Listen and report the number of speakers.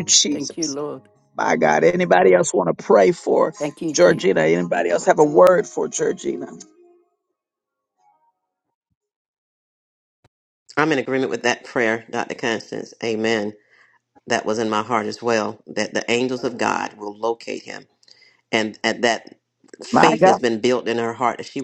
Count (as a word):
three